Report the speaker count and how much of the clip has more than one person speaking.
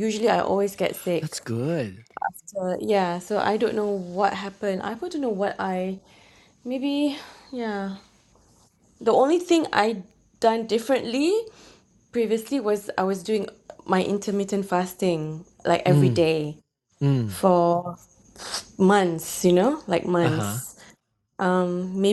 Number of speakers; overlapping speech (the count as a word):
two, about 3%